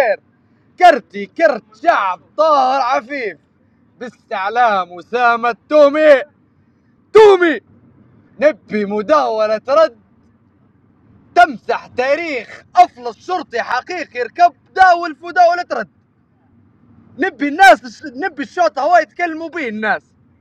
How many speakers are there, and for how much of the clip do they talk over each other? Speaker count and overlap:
one, no overlap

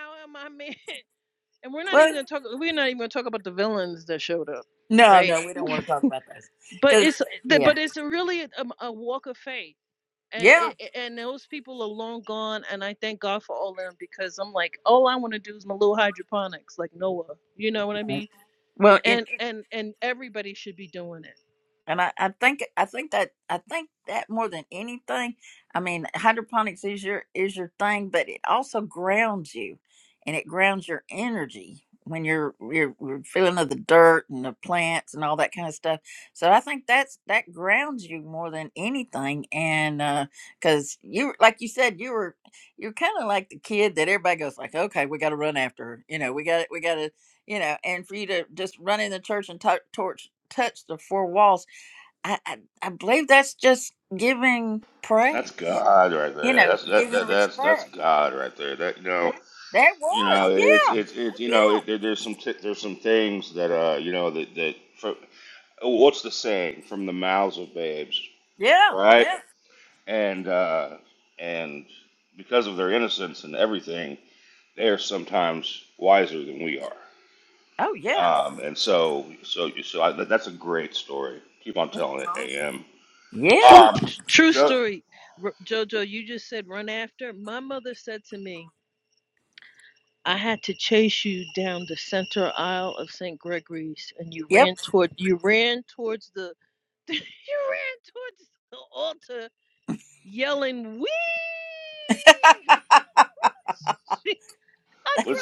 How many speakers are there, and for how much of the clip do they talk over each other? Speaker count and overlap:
three, about 6%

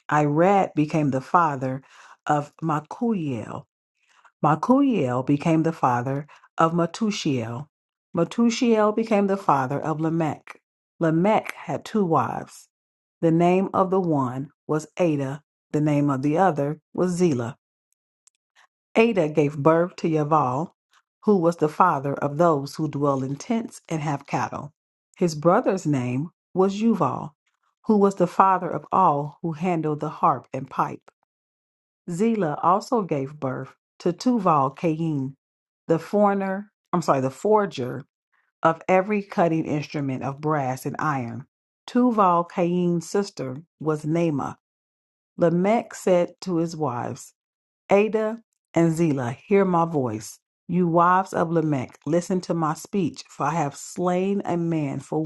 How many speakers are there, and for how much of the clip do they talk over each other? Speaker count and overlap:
one, no overlap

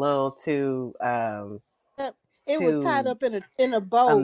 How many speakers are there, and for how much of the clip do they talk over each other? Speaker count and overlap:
two, about 17%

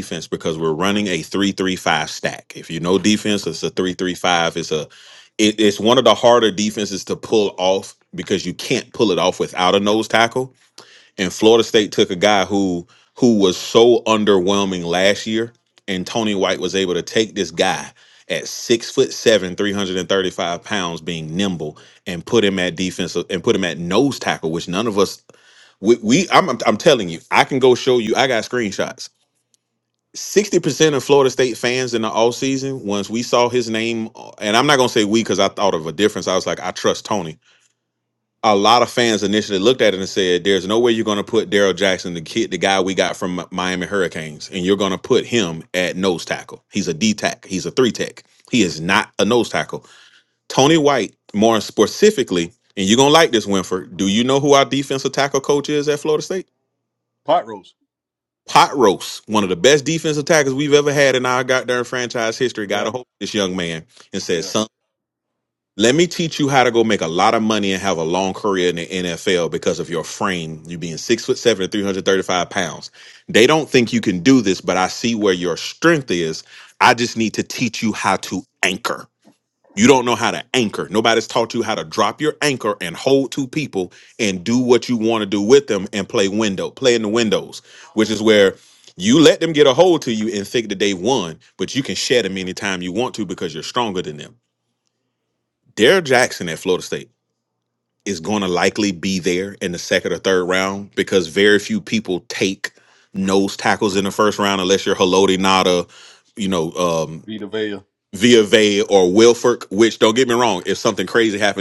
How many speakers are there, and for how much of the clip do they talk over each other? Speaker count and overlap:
two, under 1%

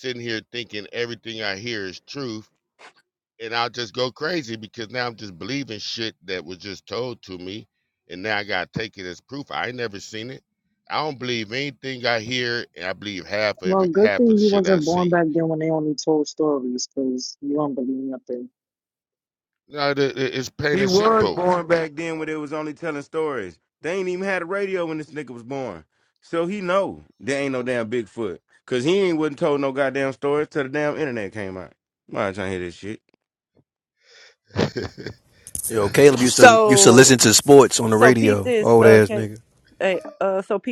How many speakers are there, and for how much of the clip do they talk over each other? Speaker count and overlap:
five, about 11%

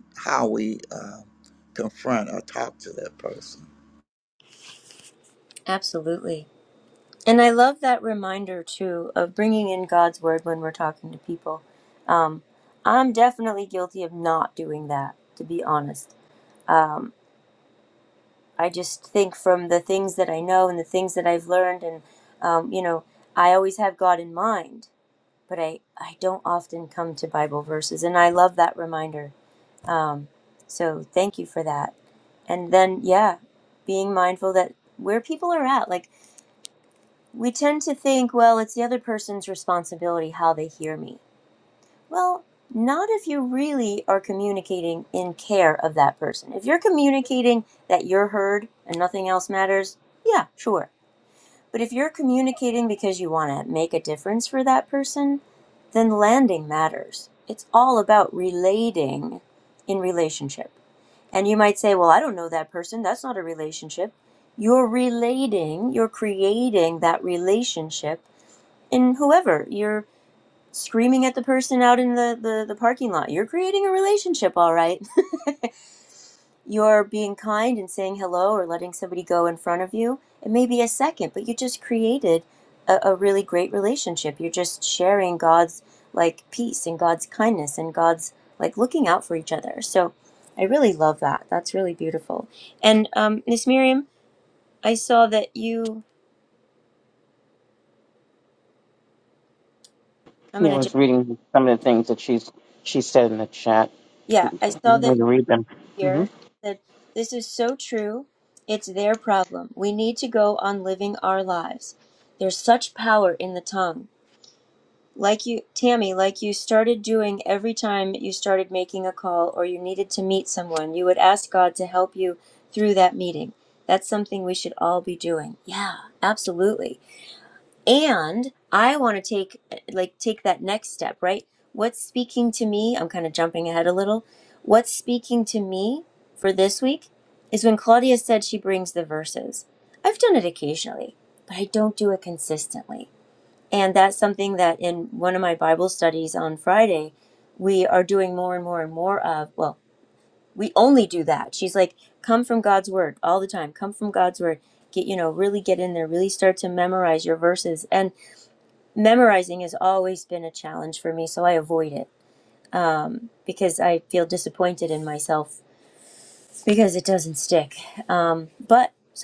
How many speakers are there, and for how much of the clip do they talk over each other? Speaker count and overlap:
three, about 1%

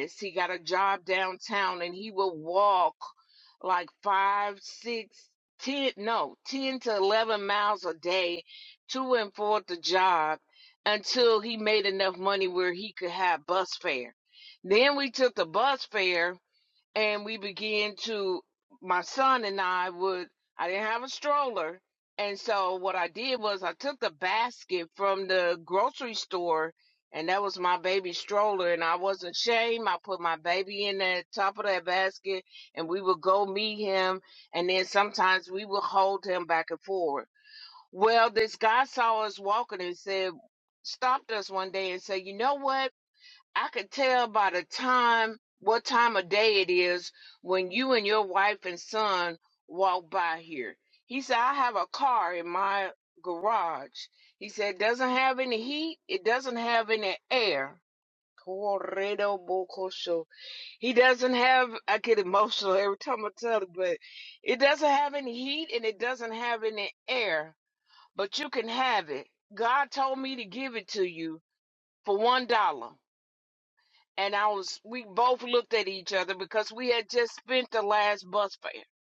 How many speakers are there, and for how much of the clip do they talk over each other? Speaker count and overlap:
one, no overlap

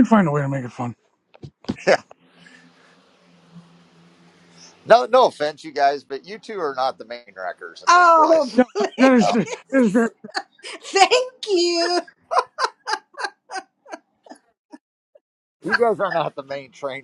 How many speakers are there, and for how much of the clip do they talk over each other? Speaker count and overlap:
three, about 4%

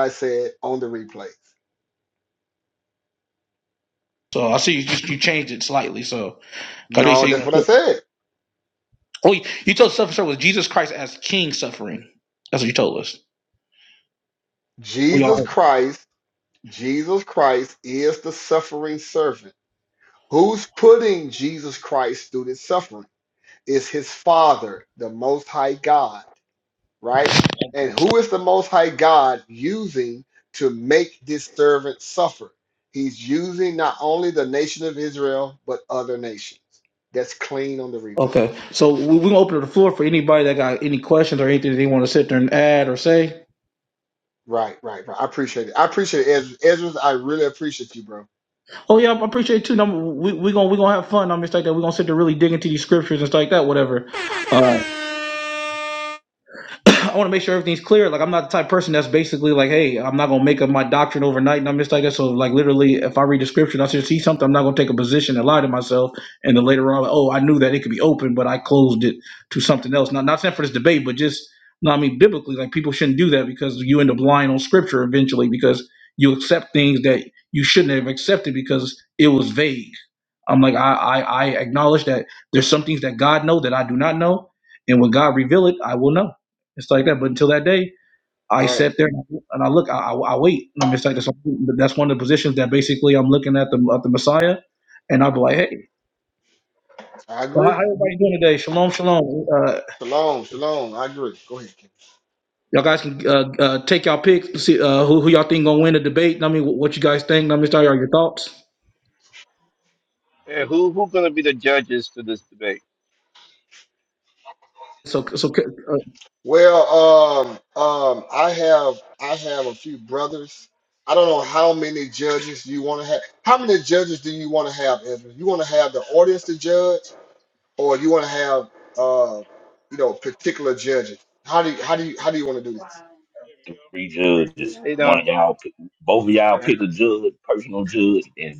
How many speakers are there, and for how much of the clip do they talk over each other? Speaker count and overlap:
four, about 2%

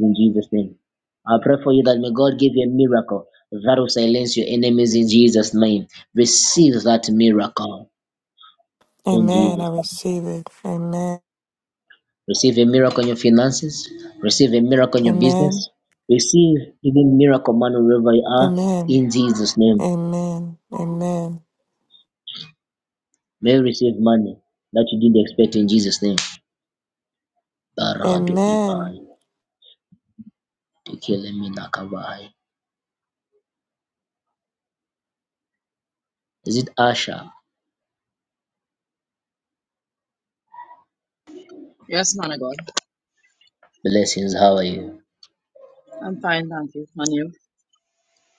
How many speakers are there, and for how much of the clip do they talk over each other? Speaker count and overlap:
three, about 5%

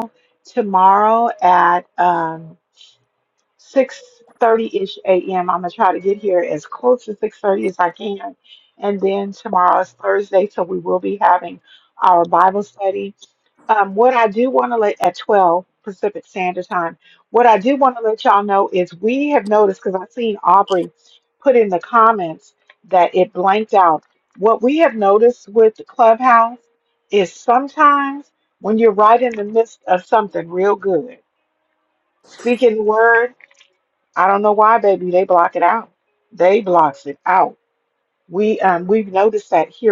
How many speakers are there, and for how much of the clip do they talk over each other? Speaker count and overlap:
one, no overlap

